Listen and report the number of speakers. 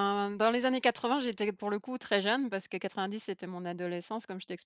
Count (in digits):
1